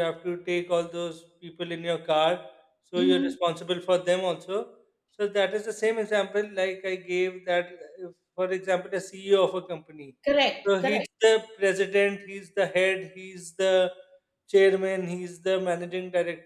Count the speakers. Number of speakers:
2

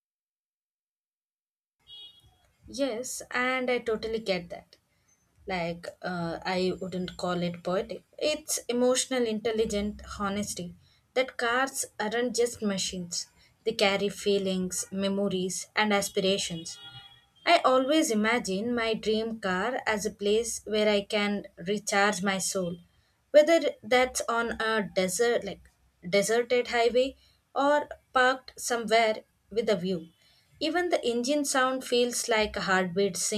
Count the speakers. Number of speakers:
1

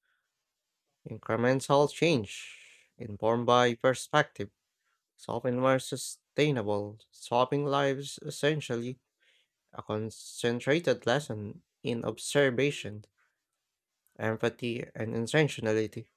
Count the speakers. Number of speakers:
1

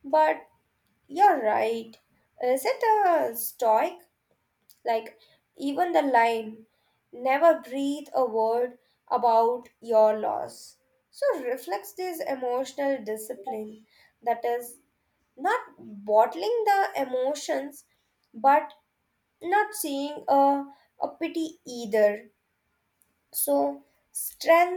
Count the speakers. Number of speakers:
1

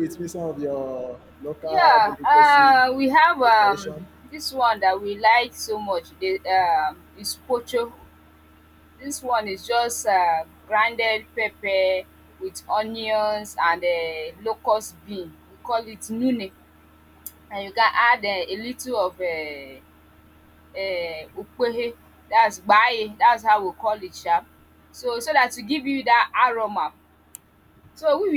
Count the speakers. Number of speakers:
2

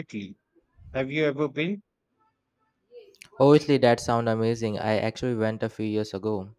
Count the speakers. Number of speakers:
2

